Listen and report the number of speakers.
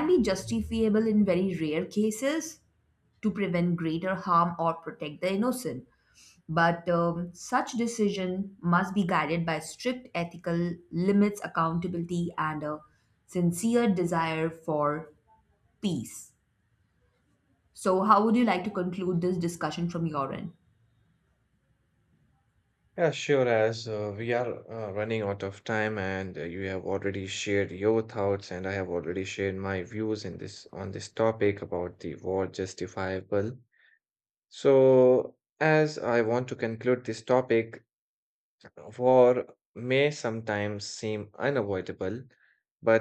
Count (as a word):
two